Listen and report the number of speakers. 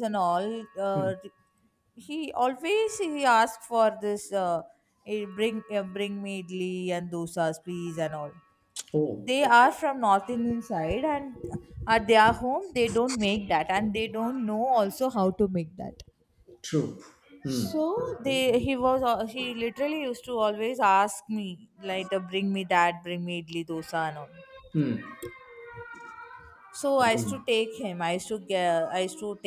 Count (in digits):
2